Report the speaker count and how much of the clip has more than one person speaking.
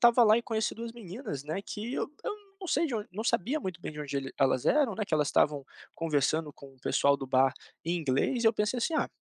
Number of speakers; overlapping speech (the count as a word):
one, no overlap